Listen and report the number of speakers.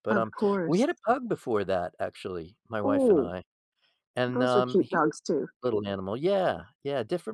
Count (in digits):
2